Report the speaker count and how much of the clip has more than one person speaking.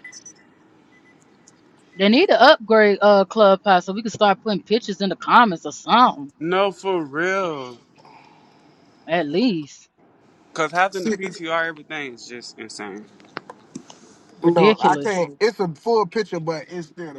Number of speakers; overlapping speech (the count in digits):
3, about 4%